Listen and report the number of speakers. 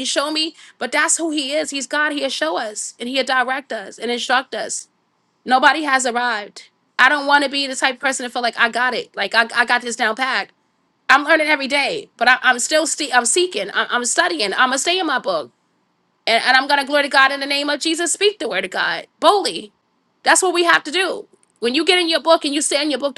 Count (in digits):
1